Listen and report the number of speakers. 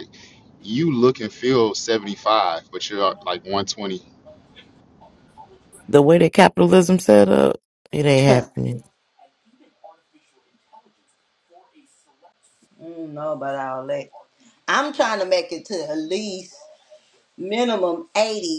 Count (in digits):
3